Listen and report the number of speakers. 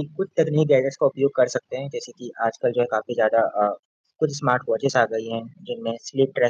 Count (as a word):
one